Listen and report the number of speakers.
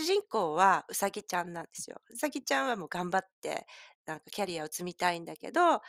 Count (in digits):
1